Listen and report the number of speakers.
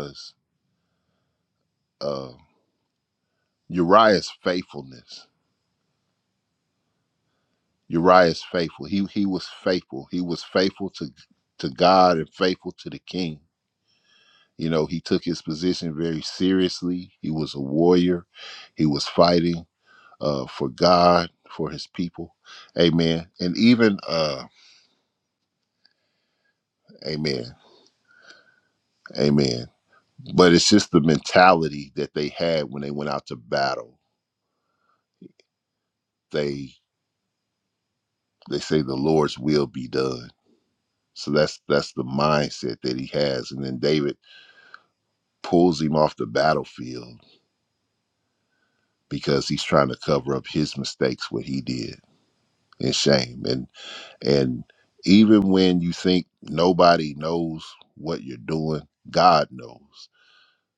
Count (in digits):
1